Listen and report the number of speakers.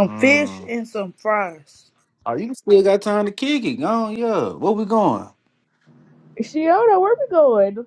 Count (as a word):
three